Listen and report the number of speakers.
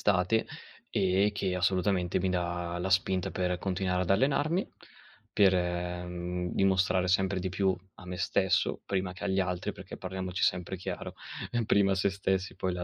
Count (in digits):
1